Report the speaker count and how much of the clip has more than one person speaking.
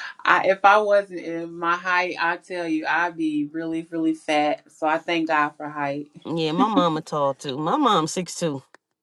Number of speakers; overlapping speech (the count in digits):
2, no overlap